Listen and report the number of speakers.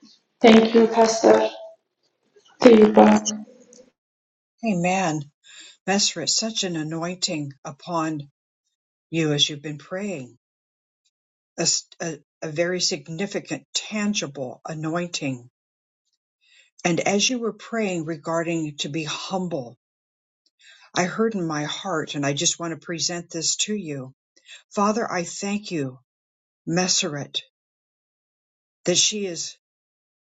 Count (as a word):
two